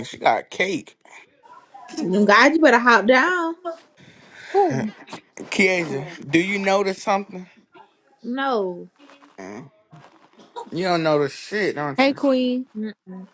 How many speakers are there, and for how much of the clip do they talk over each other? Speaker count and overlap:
3, about 2%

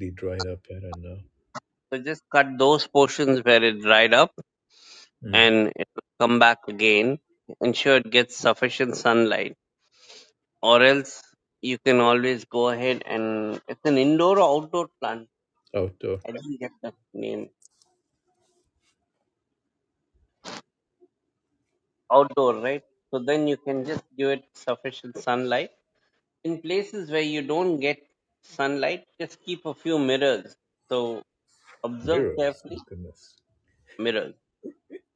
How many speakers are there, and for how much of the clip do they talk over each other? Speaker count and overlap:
2, about 3%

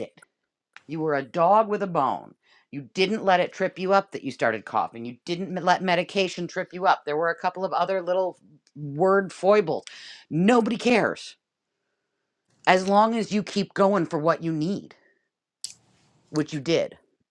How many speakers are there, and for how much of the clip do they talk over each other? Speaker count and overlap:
1, no overlap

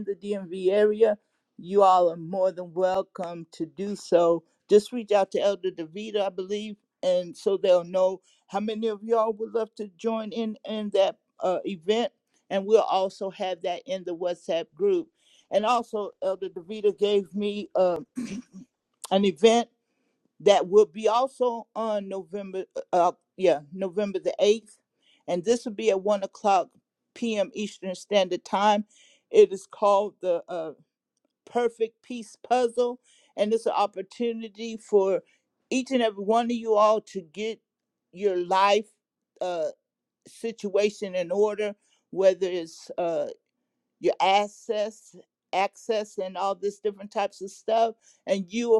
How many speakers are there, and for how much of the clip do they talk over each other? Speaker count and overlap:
1, no overlap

